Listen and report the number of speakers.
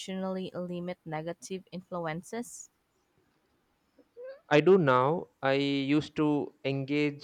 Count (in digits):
2